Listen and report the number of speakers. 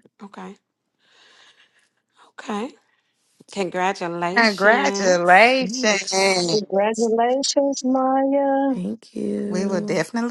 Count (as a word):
four